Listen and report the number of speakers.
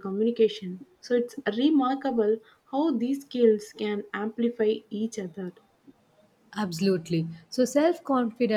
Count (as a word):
two